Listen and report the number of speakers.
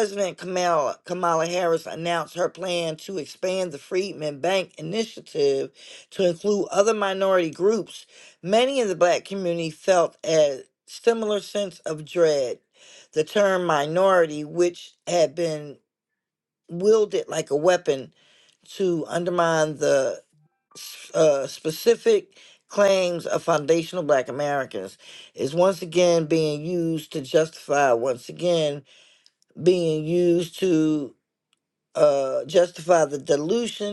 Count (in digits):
1